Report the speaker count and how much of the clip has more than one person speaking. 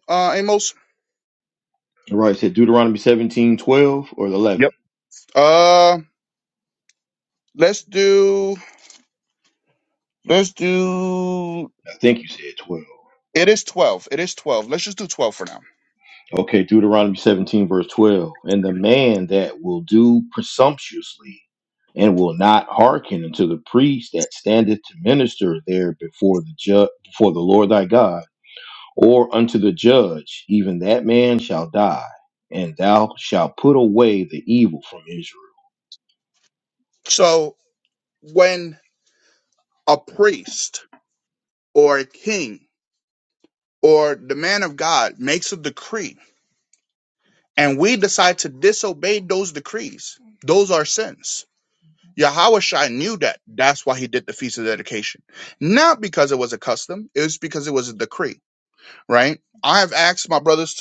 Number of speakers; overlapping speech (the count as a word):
two, under 1%